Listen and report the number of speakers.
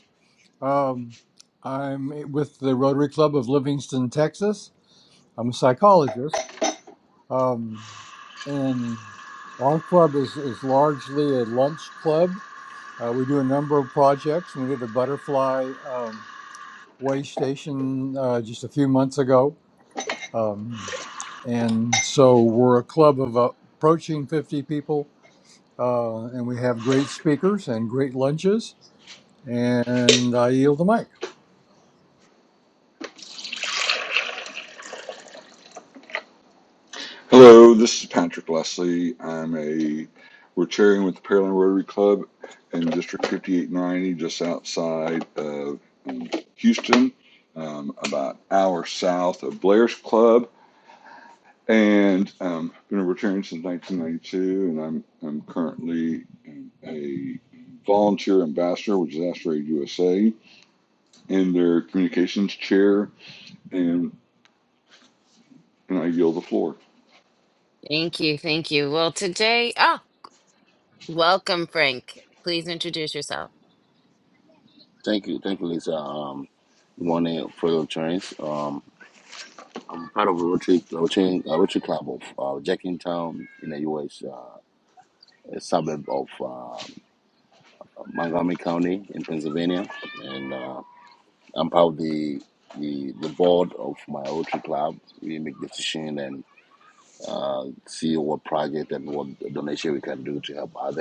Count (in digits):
4